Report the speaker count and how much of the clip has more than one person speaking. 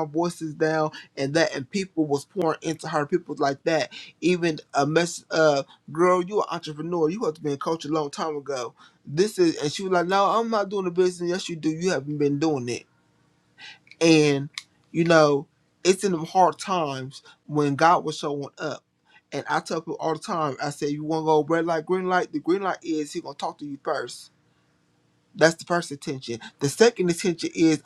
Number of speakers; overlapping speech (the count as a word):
one, no overlap